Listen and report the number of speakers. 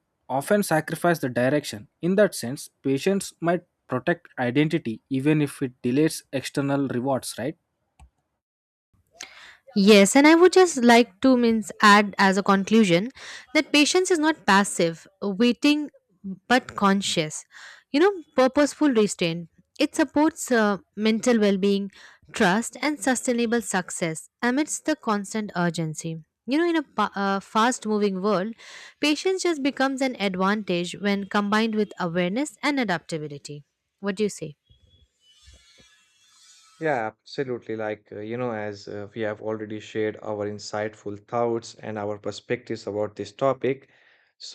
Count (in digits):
3